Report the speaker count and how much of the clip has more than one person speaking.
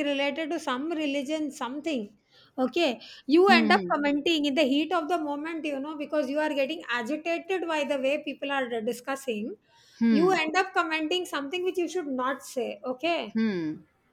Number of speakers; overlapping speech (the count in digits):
2, about 5%